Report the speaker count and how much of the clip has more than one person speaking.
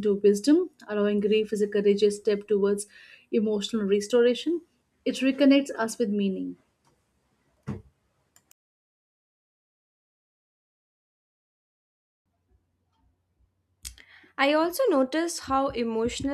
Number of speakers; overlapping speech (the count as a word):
two, no overlap